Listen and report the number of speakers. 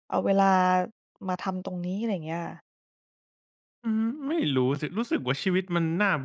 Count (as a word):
two